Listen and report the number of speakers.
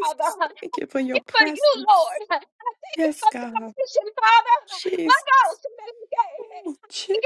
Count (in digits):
2